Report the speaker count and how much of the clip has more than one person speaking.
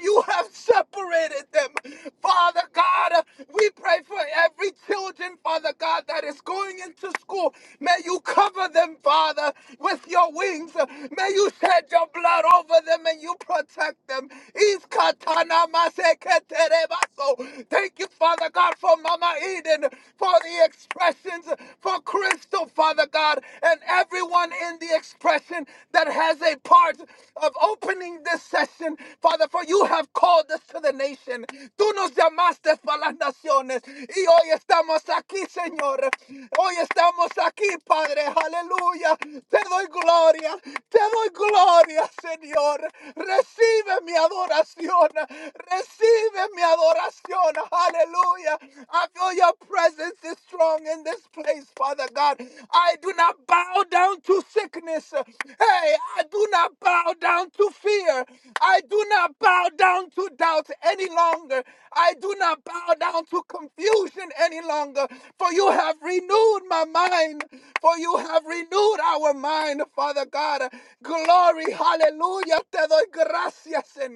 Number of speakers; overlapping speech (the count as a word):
one, no overlap